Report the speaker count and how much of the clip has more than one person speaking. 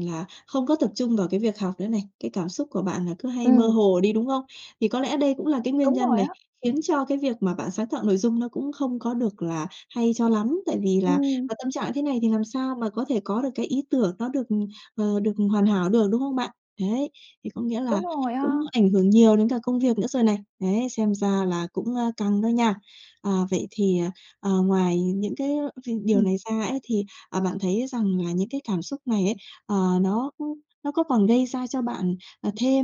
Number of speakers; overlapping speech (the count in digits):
2, about 5%